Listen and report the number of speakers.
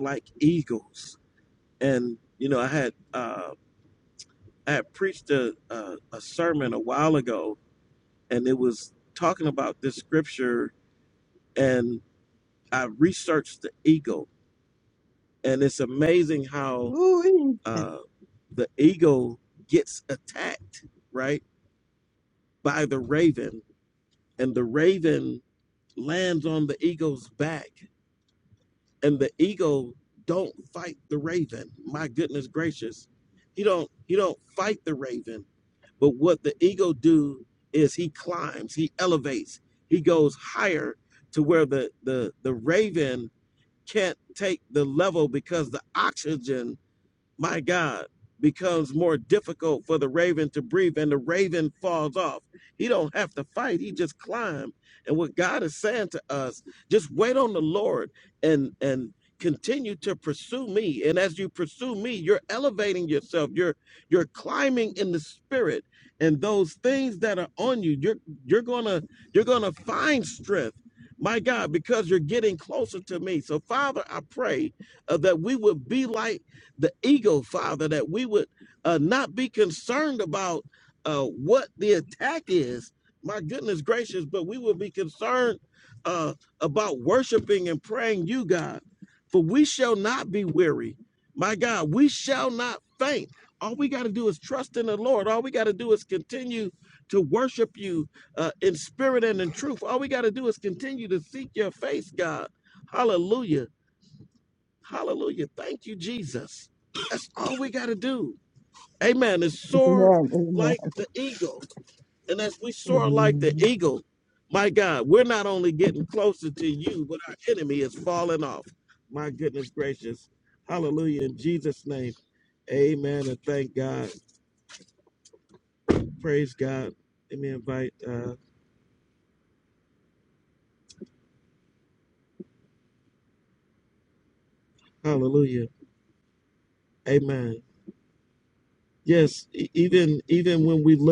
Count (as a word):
two